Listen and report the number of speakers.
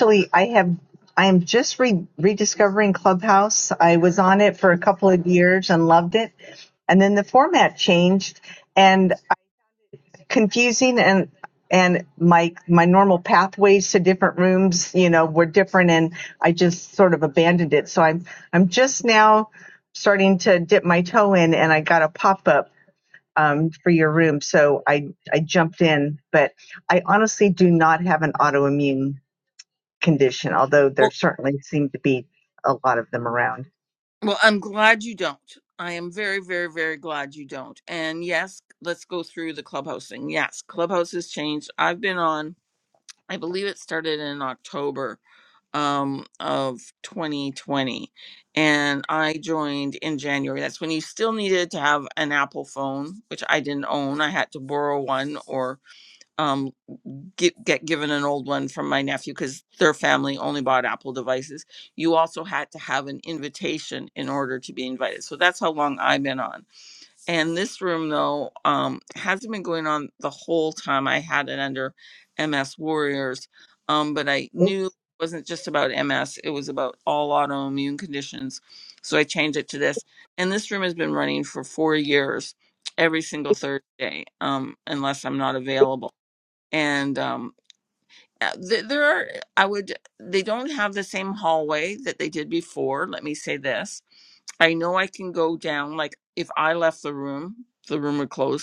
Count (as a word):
two